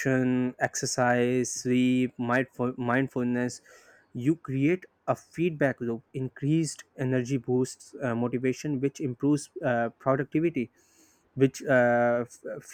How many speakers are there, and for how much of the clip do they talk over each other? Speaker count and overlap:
one, no overlap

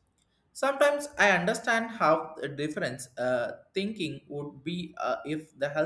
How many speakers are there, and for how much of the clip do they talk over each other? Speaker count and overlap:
one, no overlap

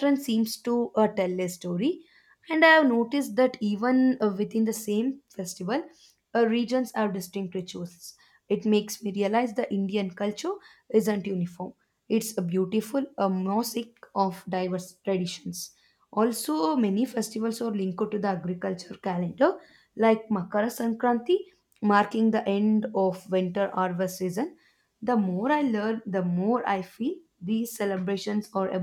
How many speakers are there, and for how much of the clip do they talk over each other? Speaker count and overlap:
one, no overlap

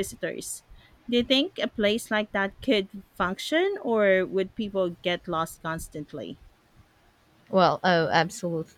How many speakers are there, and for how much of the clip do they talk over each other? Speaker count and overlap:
two, no overlap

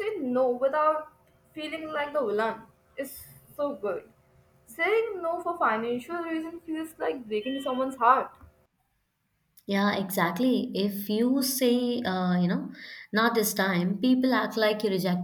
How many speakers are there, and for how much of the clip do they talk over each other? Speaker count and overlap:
two, no overlap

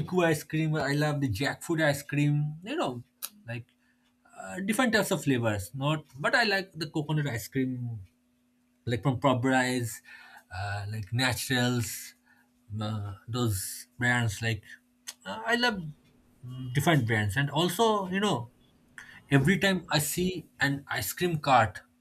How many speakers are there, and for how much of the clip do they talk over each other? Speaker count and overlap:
one, no overlap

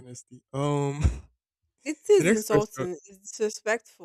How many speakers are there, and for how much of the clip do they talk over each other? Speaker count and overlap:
two, about 17%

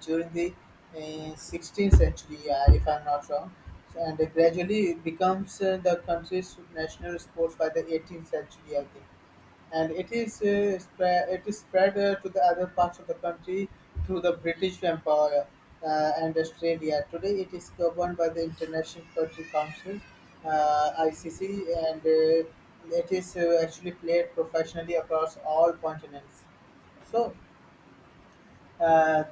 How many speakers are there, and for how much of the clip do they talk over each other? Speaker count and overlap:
one, no overlap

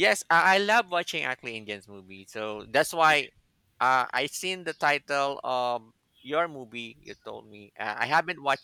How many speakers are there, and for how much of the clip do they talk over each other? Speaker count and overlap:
one, no overlap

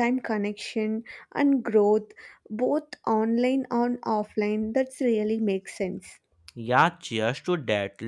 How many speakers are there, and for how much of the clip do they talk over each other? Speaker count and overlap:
two, no overlap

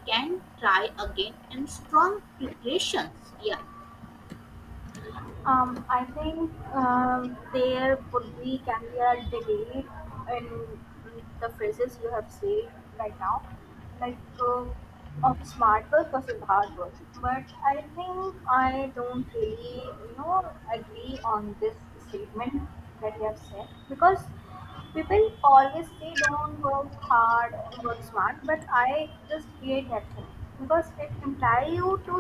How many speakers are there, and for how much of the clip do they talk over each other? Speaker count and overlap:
two, no overlap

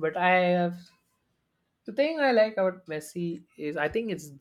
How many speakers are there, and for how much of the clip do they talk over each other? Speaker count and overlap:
one, no overlap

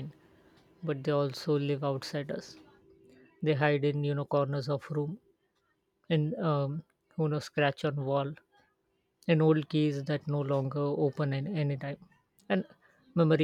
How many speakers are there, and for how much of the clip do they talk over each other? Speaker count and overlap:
one, no overlap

